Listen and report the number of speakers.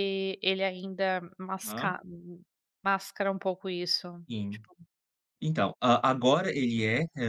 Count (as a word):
two